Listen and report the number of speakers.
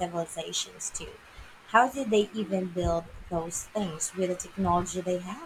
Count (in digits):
1